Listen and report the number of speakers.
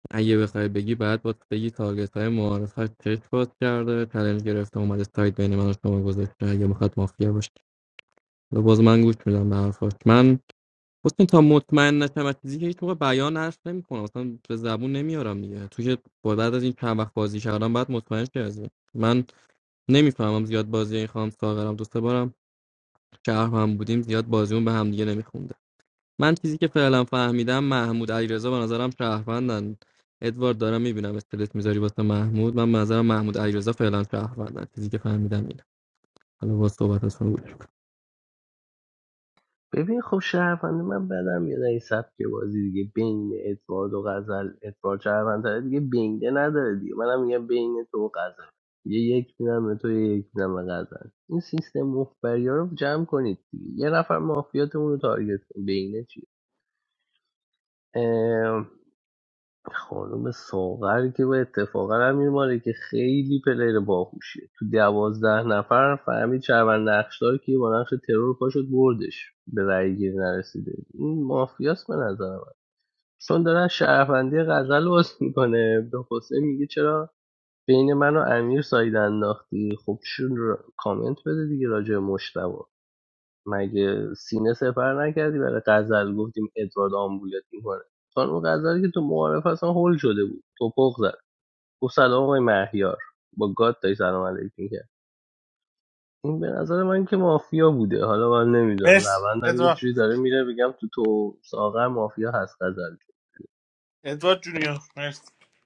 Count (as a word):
three